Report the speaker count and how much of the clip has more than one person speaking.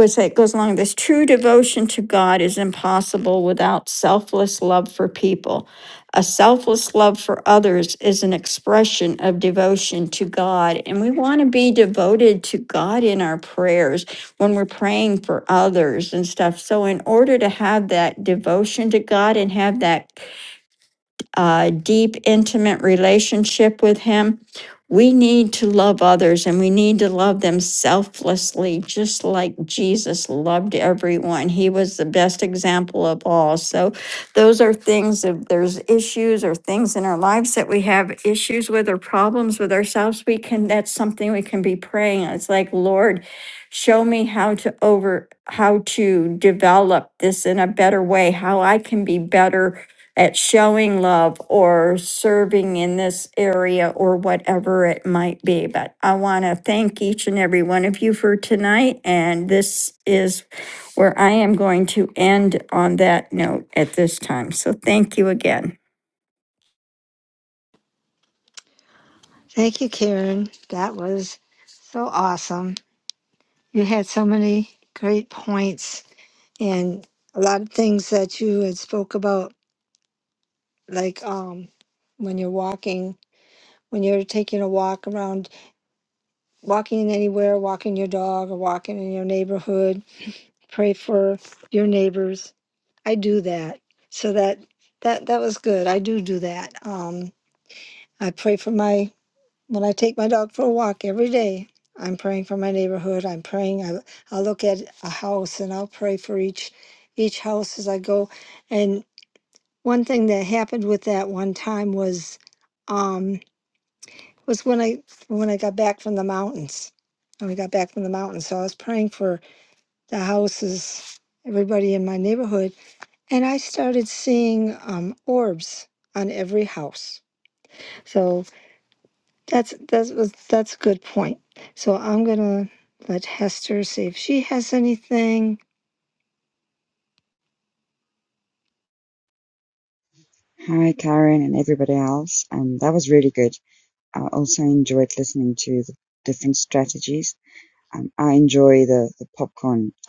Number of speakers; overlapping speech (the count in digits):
3, no overlap